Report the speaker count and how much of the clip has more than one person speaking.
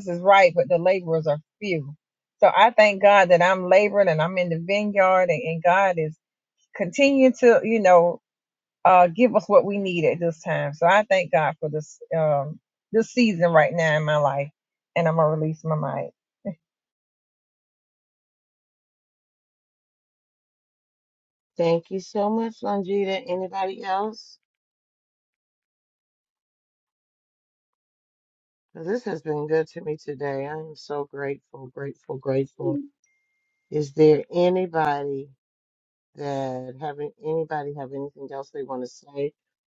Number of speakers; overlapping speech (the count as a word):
two, no overlap